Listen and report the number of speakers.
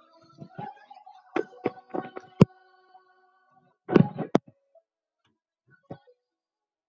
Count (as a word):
zero